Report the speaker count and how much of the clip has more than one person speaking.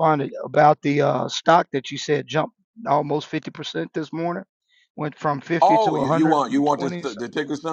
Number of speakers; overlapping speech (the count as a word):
two, about 21%